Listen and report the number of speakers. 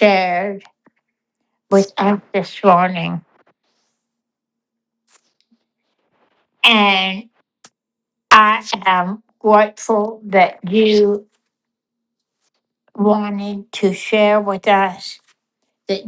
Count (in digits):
1